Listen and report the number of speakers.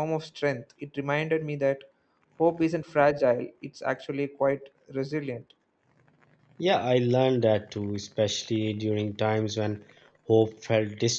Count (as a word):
two